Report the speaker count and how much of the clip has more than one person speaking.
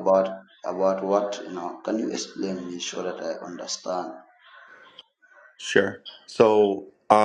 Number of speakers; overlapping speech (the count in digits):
2, no overlap